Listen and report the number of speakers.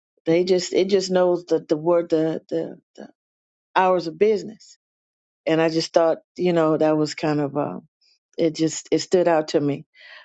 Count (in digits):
1